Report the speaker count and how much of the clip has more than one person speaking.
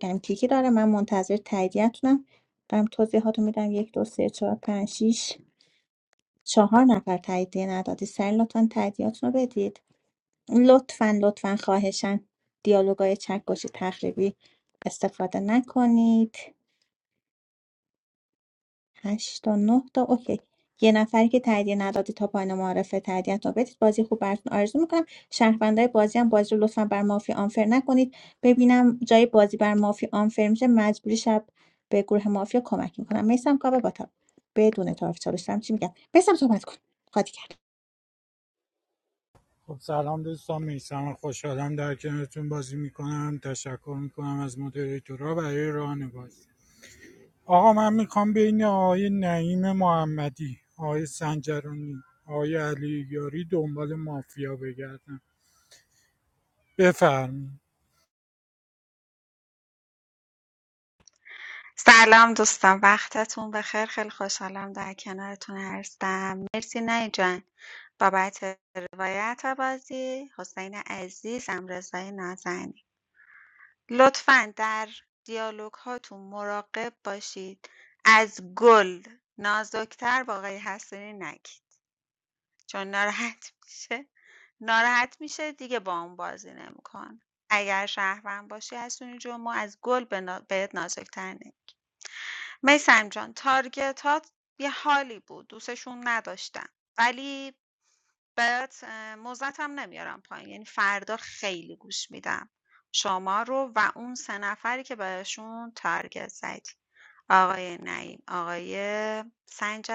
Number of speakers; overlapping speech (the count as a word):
three, no overlap